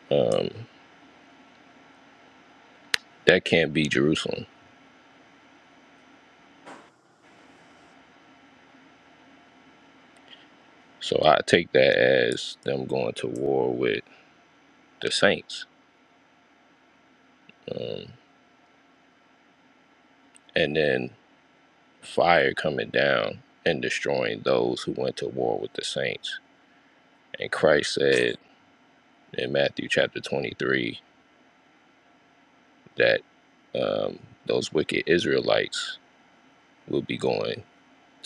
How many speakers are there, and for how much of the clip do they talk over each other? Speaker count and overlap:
one, no overlap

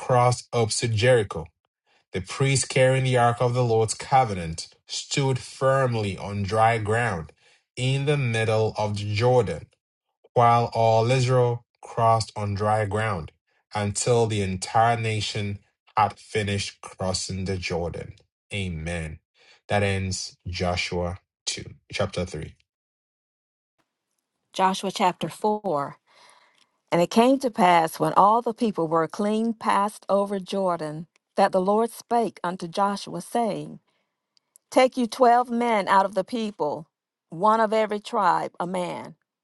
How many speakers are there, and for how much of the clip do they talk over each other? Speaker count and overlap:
two, no overlap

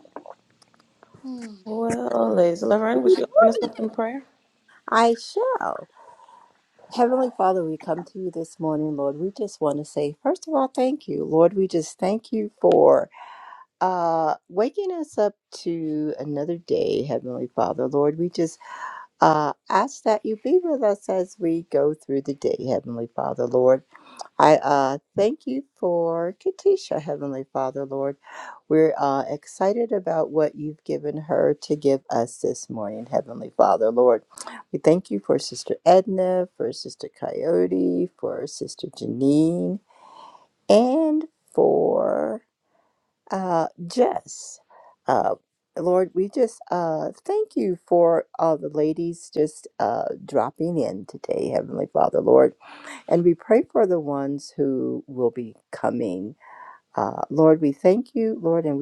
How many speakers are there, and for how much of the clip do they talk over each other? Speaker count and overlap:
two, no overlap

